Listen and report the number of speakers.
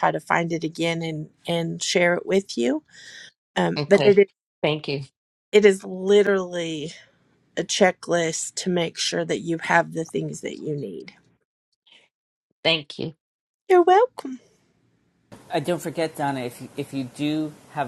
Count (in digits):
3